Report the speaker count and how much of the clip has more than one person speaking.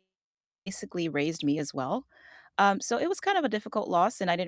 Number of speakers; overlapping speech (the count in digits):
1, no overlap